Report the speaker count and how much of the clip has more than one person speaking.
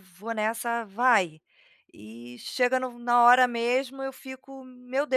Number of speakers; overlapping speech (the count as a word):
one, no overlap